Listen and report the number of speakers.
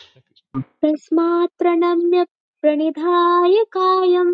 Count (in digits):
1